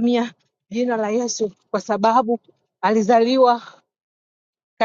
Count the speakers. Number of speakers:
1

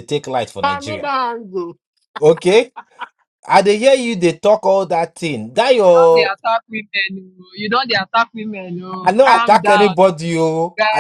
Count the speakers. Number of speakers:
3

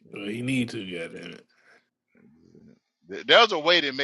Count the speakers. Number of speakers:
2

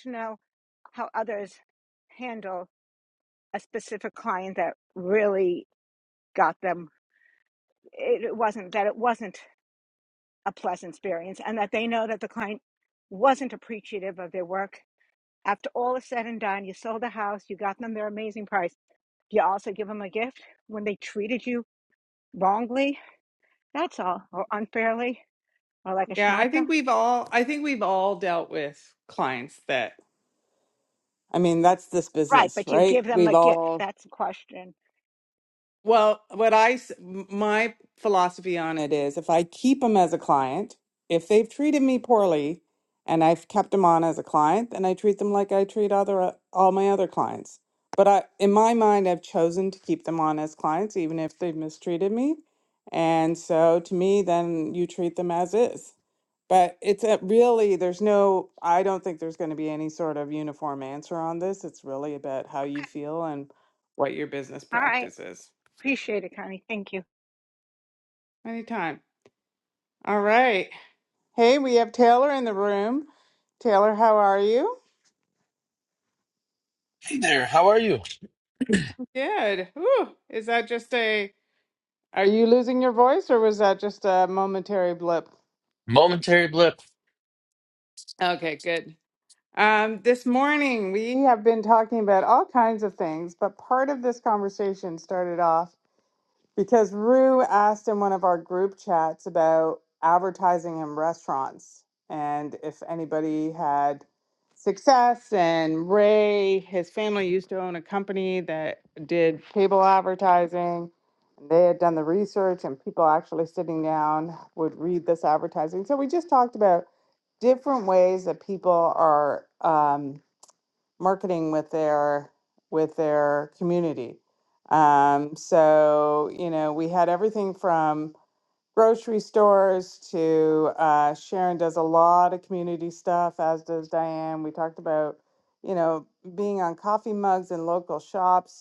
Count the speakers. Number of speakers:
3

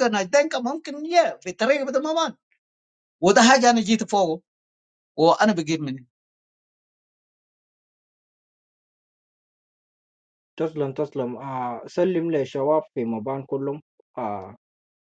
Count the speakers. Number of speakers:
2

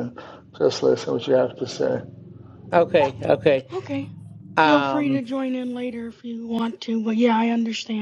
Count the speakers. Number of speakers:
3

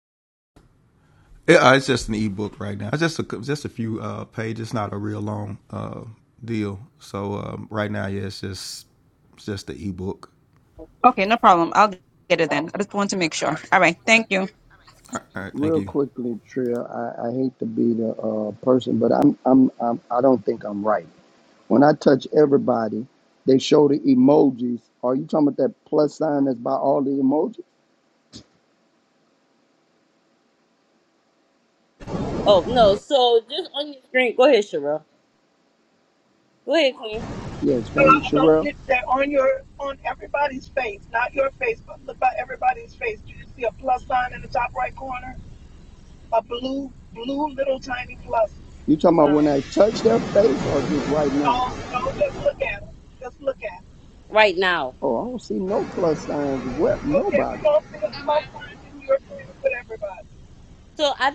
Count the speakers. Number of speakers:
5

